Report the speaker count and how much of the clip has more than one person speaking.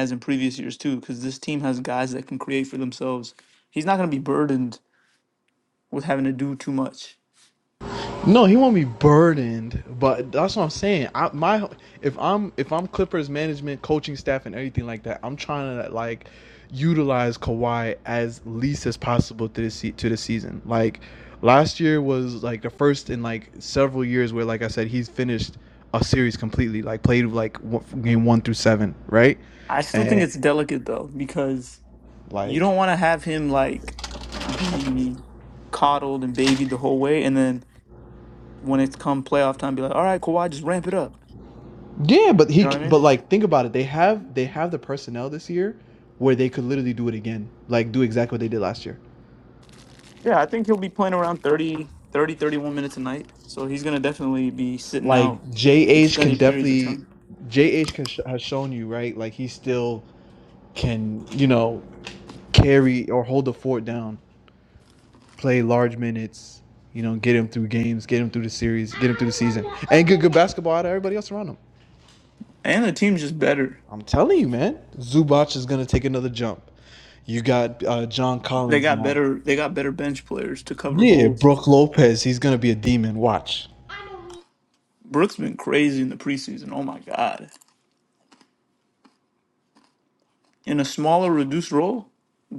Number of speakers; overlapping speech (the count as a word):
two, about 3%